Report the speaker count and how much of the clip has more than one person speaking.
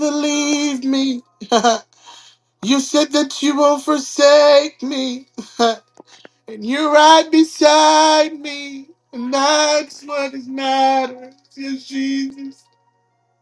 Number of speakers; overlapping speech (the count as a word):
one, no overlap